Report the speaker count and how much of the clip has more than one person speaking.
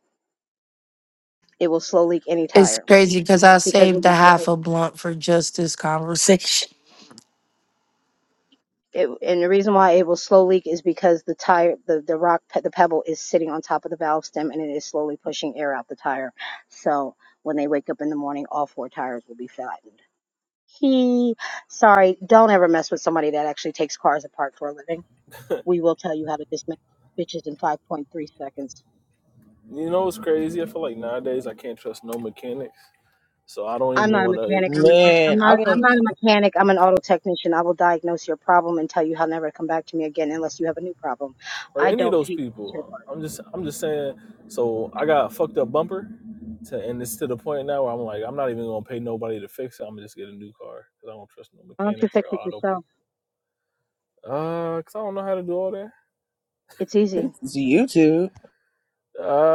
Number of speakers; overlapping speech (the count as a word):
four, about 9%